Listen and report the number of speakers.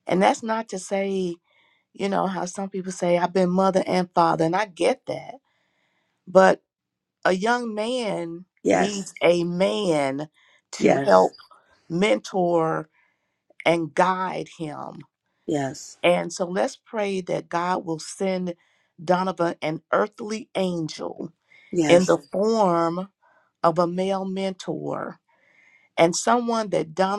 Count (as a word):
two